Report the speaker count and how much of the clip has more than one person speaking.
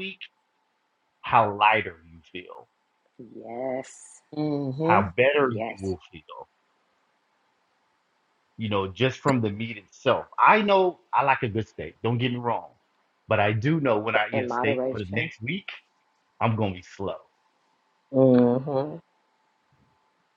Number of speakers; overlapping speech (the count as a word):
three, about 8%